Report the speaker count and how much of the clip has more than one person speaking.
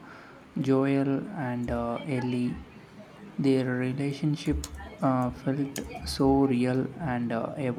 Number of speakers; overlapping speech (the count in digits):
1, no overlap